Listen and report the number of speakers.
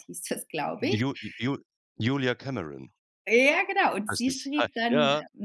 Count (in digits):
2